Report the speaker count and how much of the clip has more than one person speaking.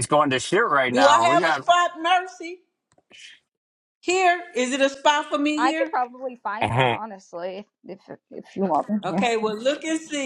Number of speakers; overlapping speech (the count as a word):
three, about 17%